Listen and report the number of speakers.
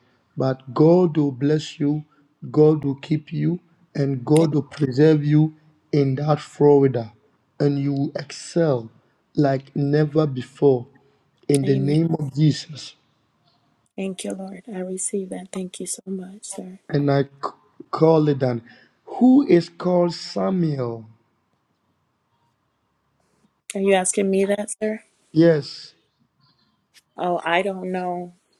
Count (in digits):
2